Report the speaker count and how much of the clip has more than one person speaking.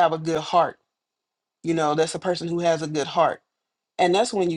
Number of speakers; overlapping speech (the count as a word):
one, no overlap